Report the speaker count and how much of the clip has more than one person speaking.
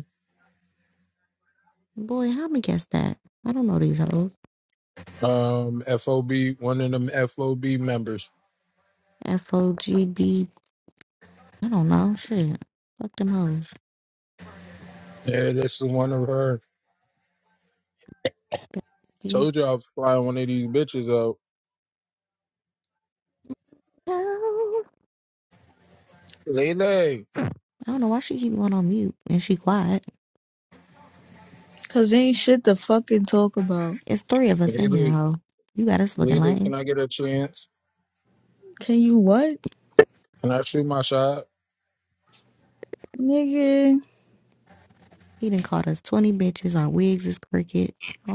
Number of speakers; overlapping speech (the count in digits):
3, about 2%